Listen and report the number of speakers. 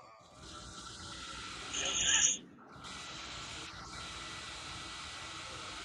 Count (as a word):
zero